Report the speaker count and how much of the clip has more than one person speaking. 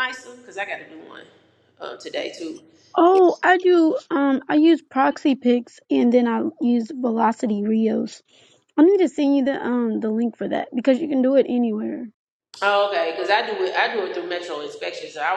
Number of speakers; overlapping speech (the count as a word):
two, no overlap